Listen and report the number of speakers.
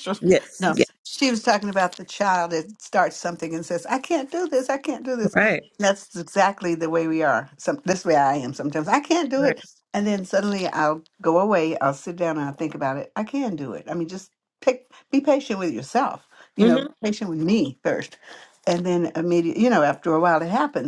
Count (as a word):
two